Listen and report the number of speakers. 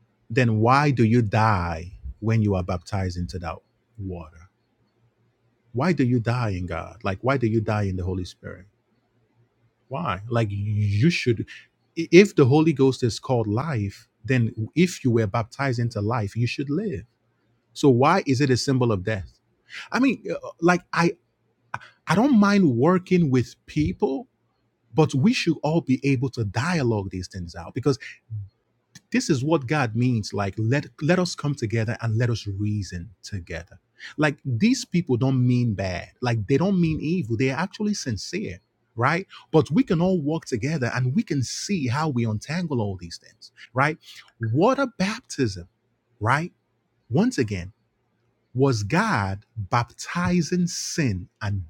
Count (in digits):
1